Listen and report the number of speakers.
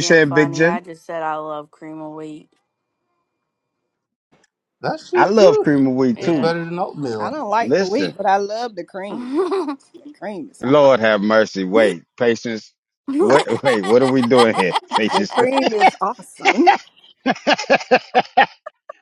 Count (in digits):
4